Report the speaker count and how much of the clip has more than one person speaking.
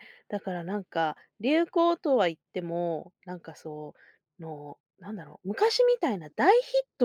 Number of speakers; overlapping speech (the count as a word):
one, no overlap